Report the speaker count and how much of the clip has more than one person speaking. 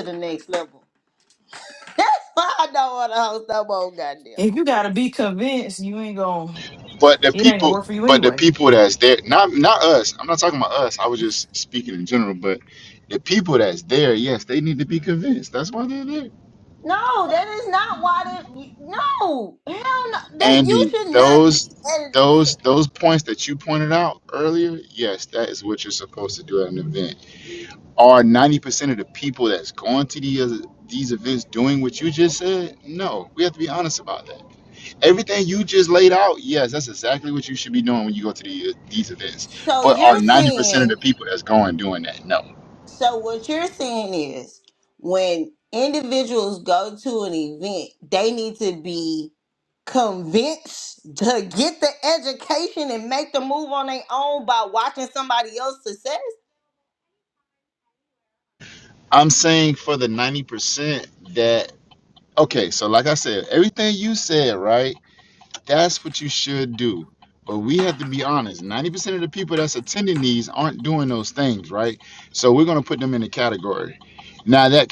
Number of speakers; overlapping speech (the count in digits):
3, about 6%